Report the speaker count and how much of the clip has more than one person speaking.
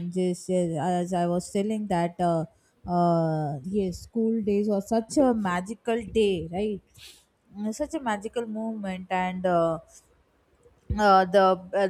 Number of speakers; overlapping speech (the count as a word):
one, no overlap